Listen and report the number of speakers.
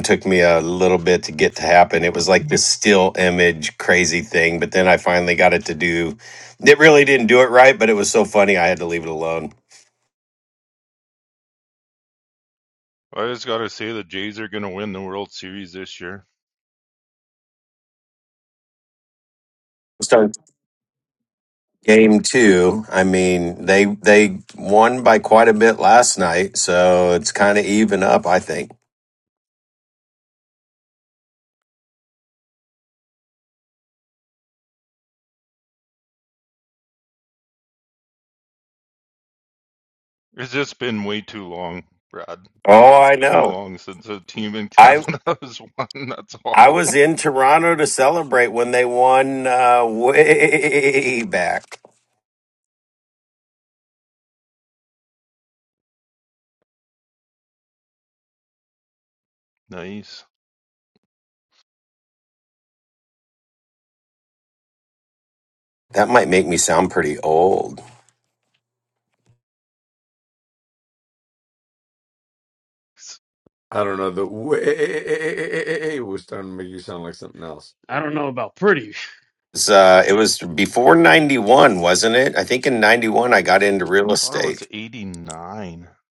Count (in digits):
4